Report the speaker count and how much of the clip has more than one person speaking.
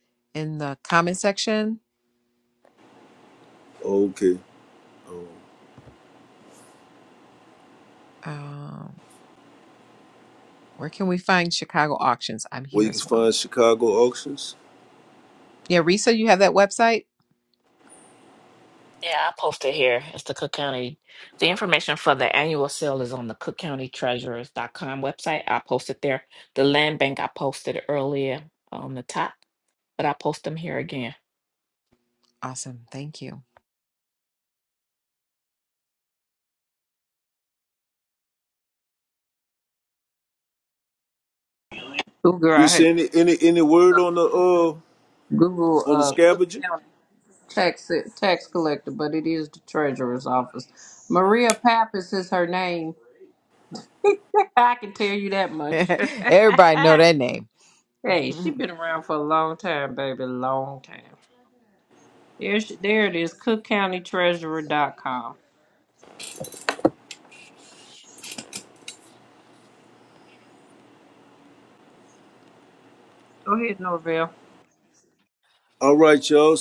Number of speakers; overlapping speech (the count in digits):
4, about 2%